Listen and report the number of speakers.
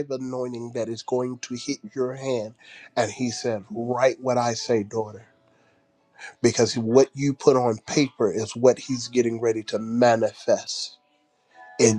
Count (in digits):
1